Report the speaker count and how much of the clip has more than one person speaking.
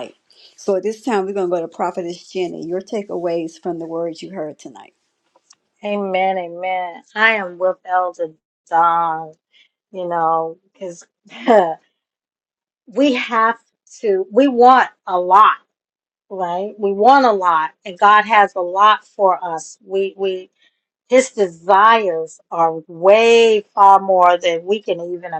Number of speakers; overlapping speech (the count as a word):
two, no overlap